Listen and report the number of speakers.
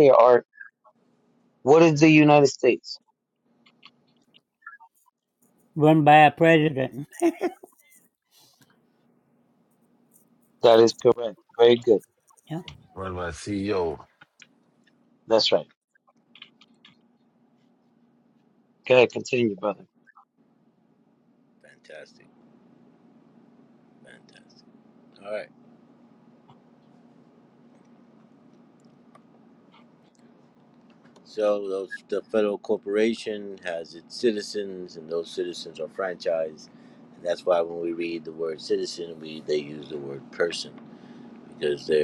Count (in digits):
4